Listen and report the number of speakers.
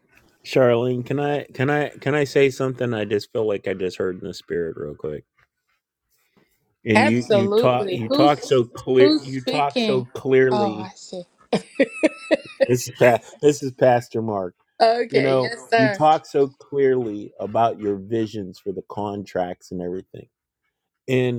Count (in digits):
2